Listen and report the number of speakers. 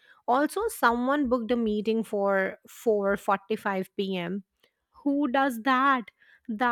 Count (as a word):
one